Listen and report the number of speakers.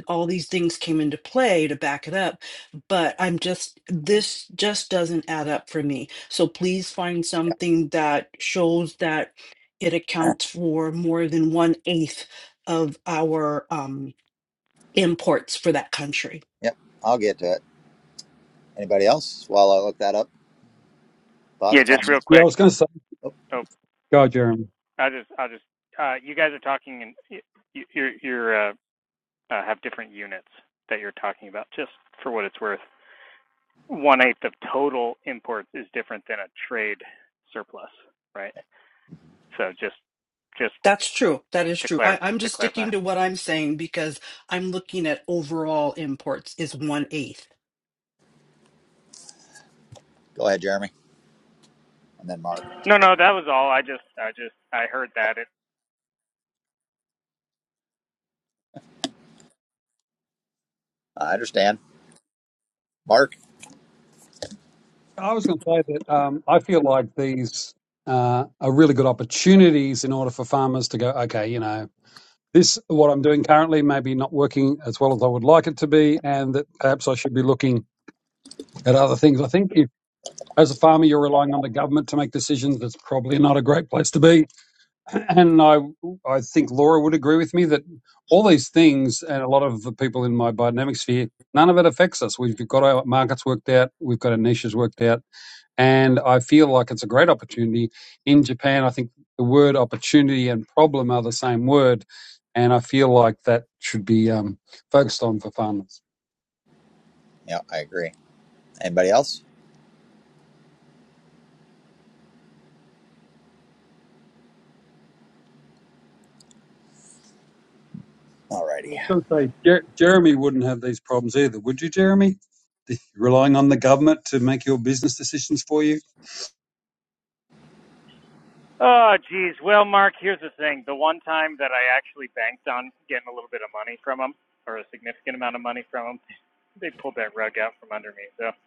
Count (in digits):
4